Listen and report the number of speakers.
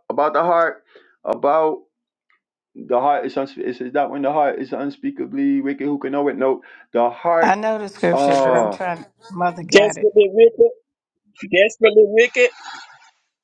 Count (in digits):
3